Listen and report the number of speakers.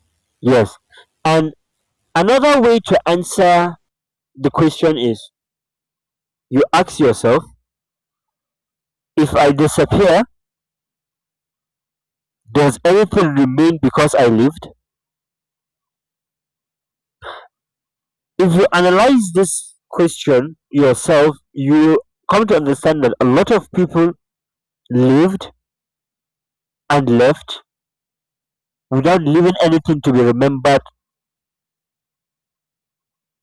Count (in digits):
1